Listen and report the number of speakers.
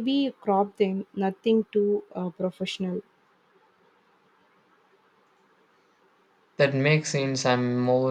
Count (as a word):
two